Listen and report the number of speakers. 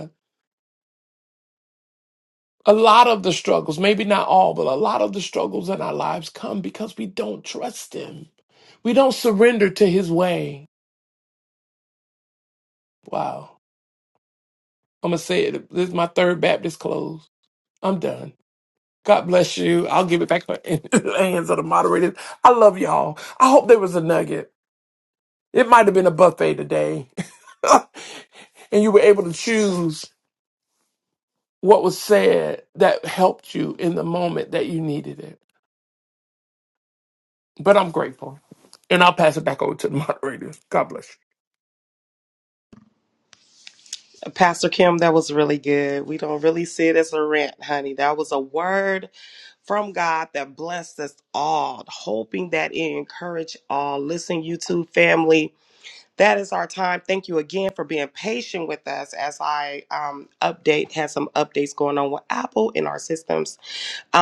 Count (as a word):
two